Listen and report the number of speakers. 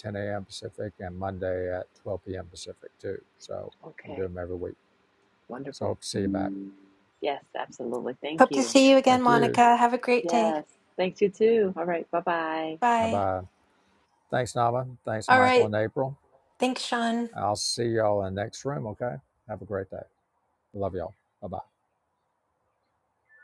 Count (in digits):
3